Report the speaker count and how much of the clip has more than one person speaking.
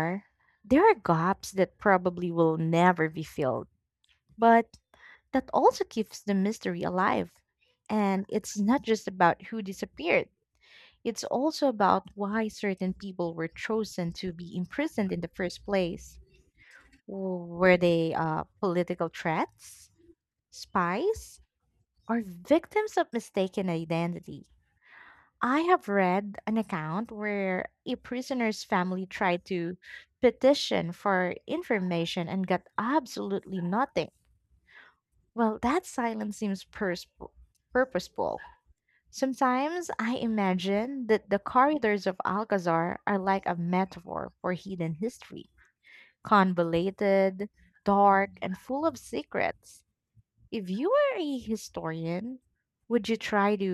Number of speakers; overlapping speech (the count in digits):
1, no overlap